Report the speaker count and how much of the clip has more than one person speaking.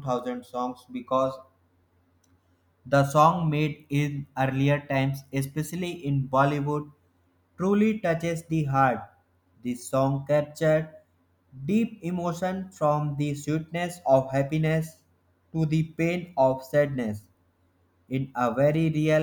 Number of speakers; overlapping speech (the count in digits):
1, no overlap